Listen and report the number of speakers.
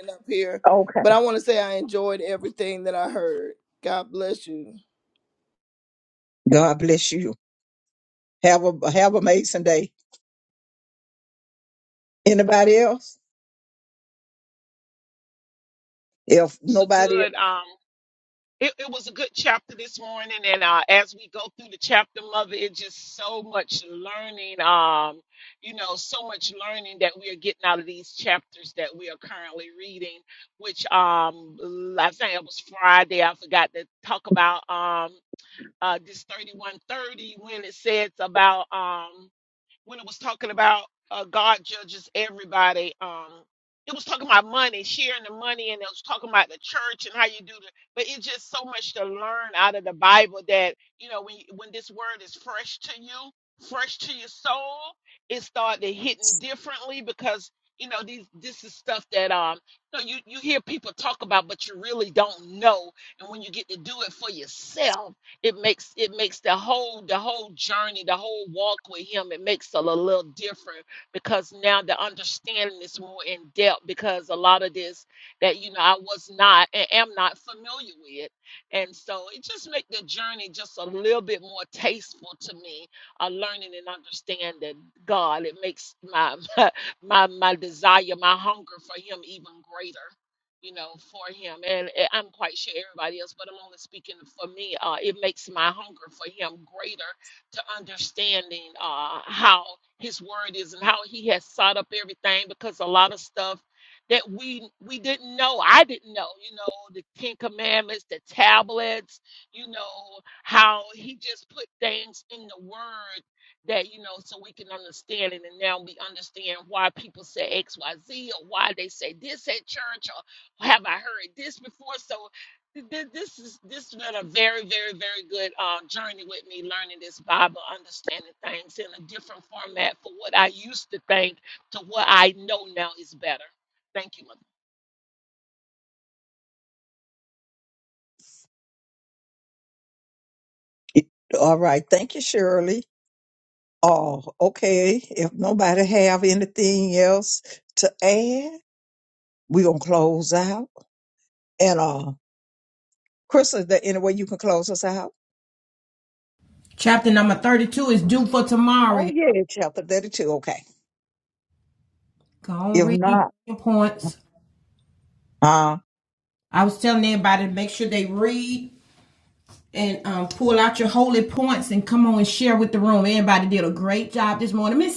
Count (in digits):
4